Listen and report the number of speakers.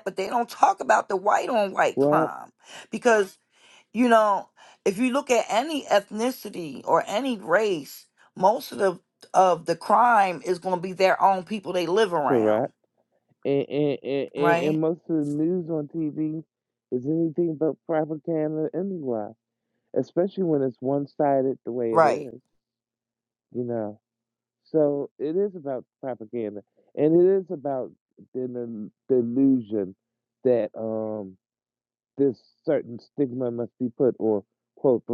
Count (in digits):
2